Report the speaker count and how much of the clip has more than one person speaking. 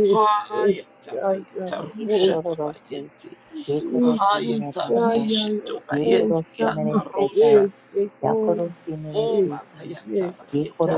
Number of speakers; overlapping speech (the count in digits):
3, about 57%